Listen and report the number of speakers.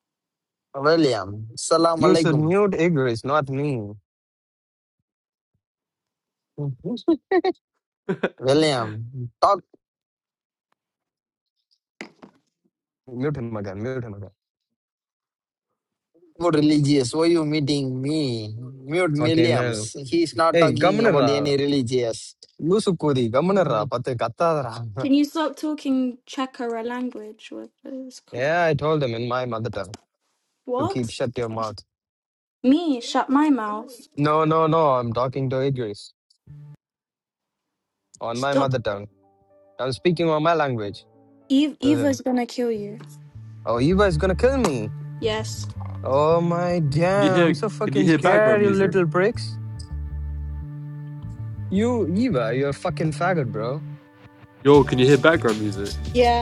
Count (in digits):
4